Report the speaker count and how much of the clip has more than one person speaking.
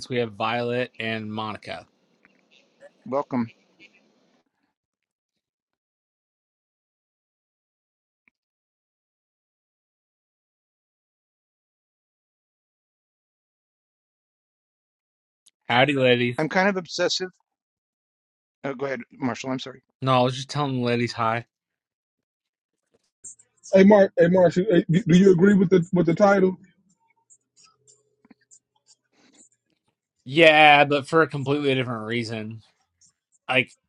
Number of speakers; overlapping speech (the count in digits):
3, no overlap